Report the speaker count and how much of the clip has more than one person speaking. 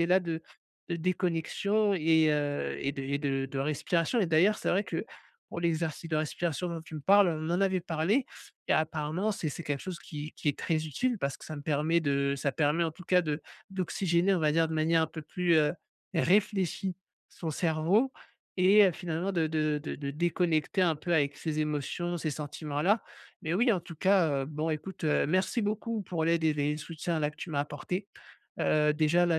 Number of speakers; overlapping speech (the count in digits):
1, no overlap